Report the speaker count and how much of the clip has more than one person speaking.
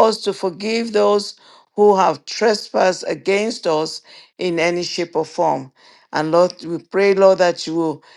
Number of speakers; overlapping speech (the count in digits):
1, no overlap